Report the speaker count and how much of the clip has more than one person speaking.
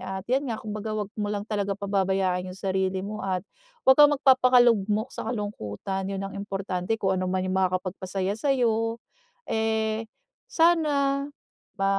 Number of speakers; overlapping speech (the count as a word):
one, no overlap